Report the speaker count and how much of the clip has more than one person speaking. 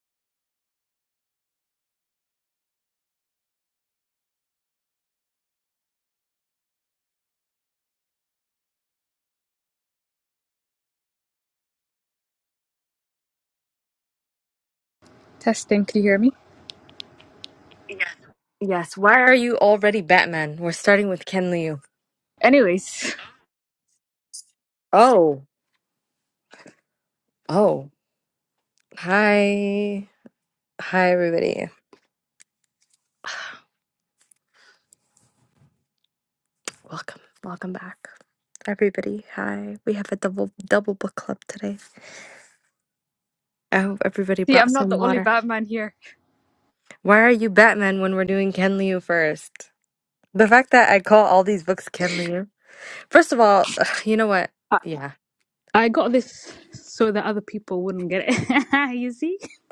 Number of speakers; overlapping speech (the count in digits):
3, about 1%